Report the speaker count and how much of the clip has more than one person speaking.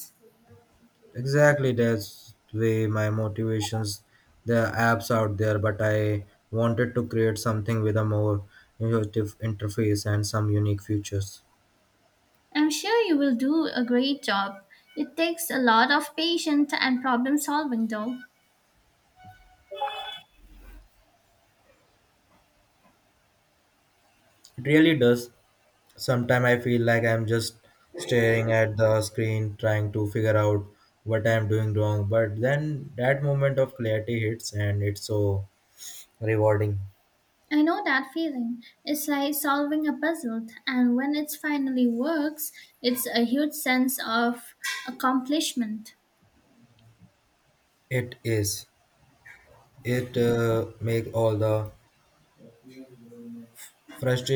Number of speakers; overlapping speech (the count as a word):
two, no overlap